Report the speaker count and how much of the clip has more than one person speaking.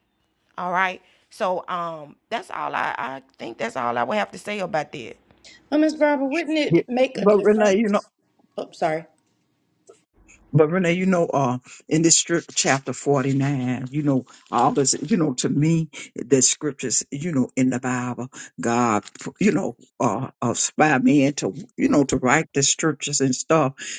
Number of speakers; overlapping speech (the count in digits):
3, about 4%